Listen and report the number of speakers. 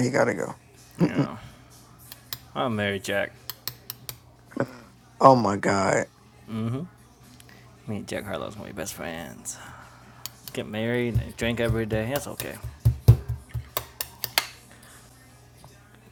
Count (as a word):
two